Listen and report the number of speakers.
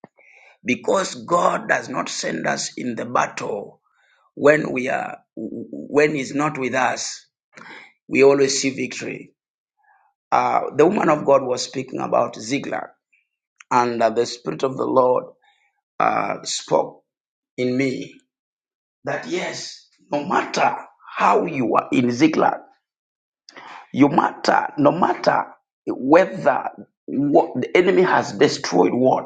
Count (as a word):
one